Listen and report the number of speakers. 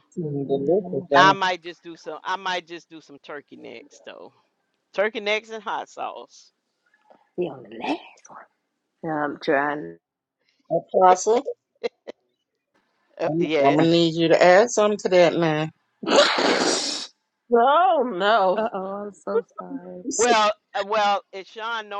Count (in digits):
4